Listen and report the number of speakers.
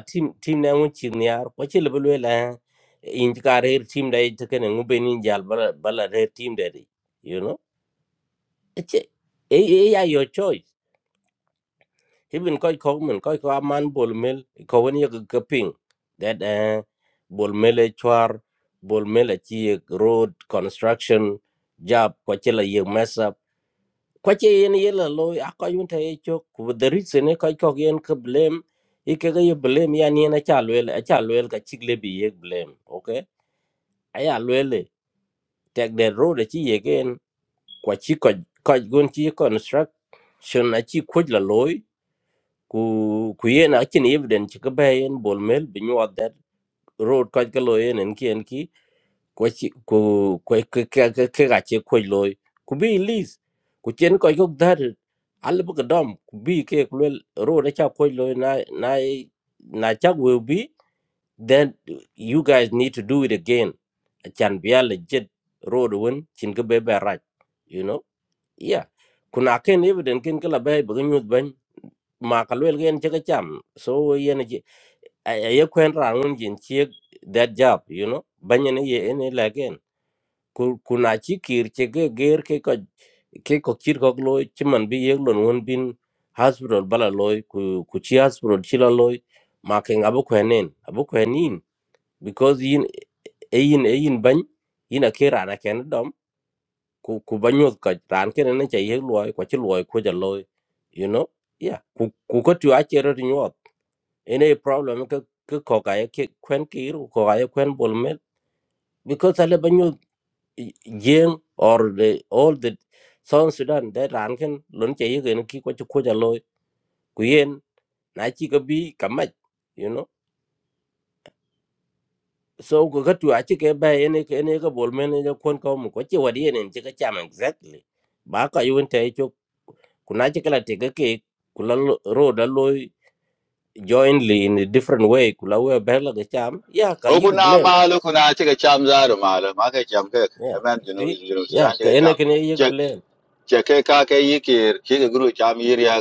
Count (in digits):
2